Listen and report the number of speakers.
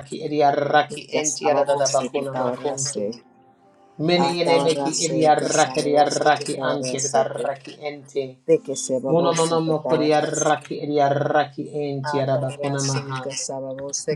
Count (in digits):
2